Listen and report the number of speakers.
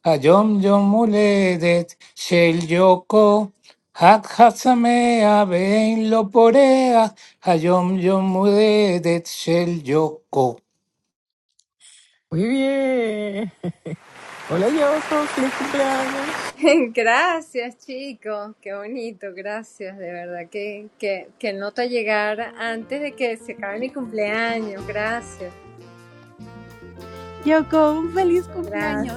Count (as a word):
four